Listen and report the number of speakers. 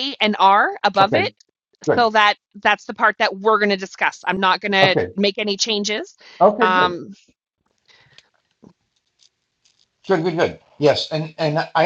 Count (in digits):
2